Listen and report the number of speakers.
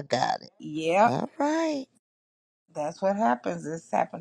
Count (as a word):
two